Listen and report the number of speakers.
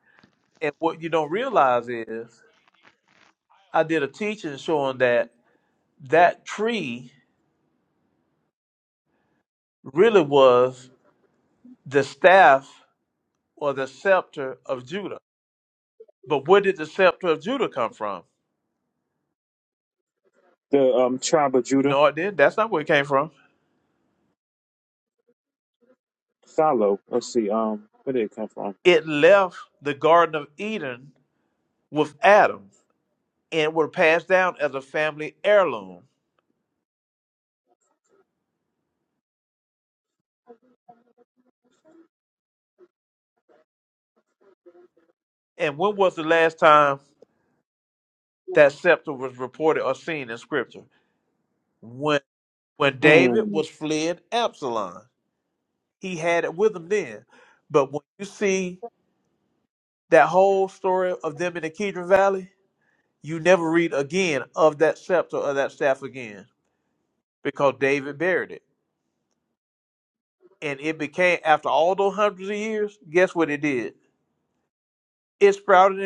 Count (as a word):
two